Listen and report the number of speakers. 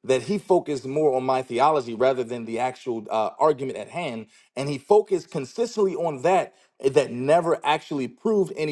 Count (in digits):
1